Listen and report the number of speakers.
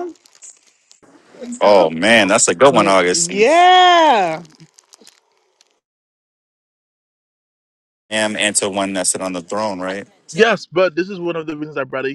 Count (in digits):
3